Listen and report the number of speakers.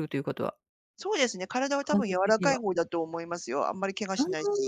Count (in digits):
2